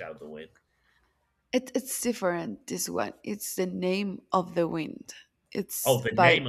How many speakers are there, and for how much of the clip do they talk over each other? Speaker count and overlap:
two, about 6%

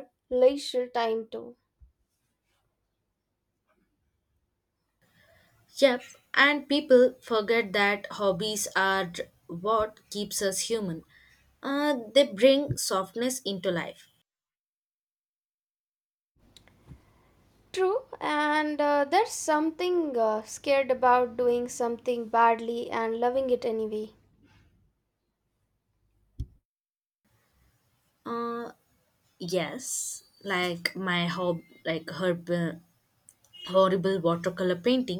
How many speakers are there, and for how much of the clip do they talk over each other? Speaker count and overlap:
two, no overlap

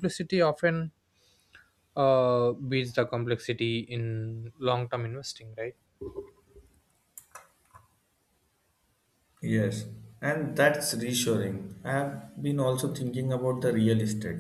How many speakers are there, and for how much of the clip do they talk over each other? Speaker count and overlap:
two, no overlap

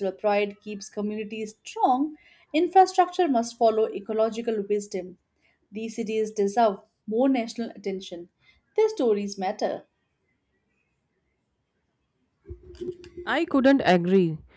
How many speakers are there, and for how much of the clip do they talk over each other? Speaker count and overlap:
two, no overlap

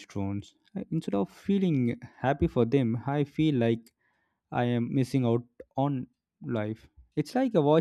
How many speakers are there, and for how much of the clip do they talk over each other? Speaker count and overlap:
one, no overlap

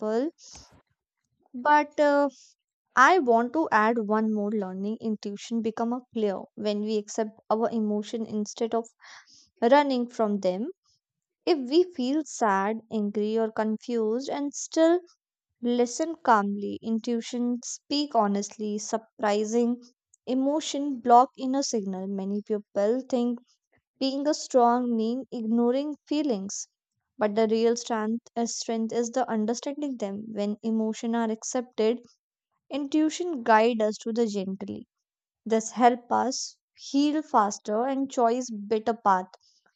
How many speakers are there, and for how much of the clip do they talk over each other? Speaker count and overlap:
one, no overlap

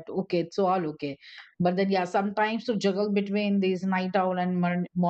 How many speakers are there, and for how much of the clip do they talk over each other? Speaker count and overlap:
one, no overlap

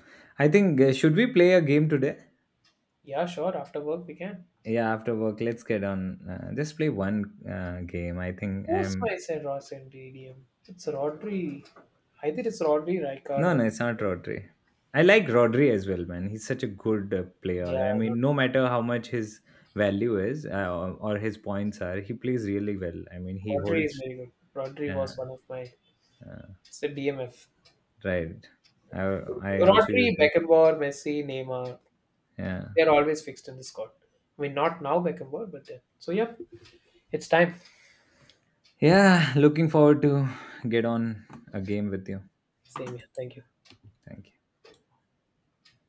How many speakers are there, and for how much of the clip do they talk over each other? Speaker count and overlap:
two, about 5%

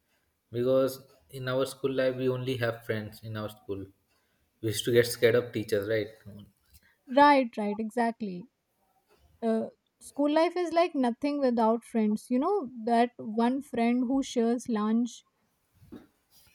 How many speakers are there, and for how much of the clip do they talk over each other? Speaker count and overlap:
two, no overlap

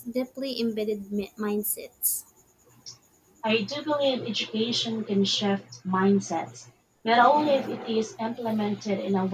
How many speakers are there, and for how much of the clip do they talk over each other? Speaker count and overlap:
two, no overlap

